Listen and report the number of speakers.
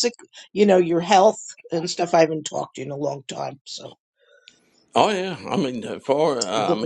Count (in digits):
2